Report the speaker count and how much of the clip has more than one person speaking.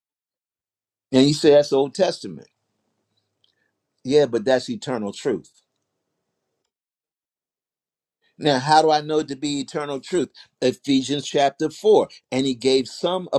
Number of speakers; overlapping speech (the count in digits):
1, no overlap